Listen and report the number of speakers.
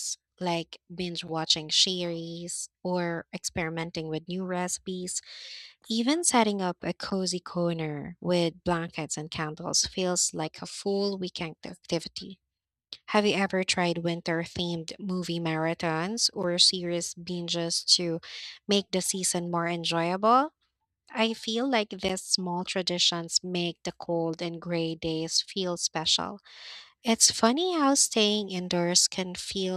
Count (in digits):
1